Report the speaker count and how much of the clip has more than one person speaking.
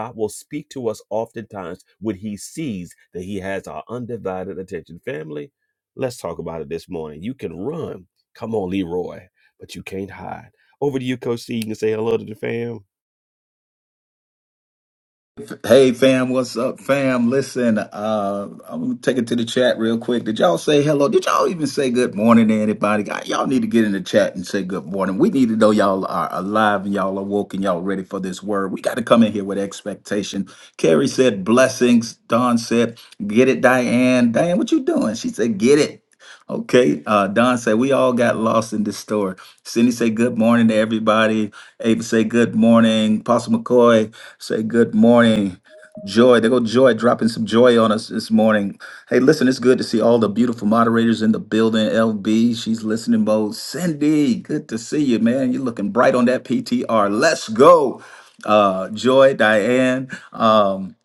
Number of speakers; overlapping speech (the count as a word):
two, no overlap